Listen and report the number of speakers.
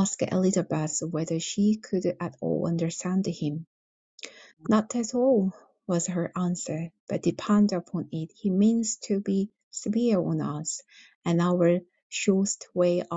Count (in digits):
1